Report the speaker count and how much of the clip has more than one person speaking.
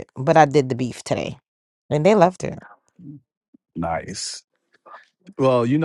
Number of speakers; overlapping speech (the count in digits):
2, no overlap